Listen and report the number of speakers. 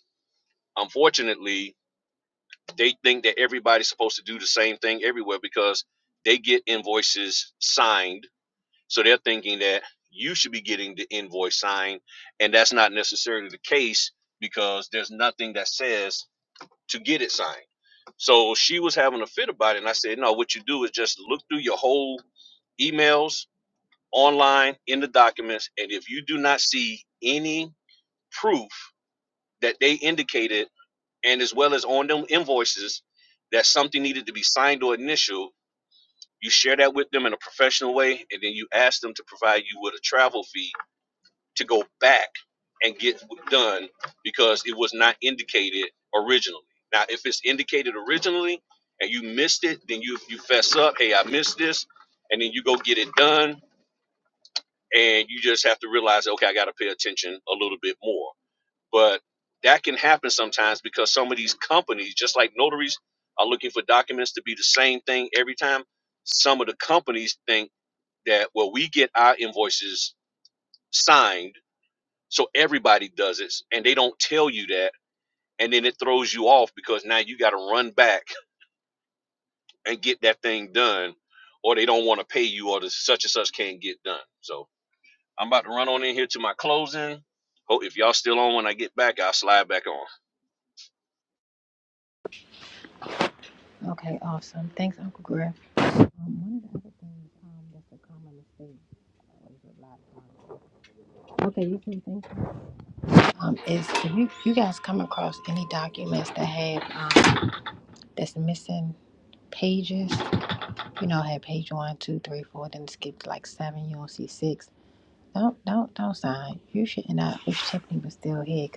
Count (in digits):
2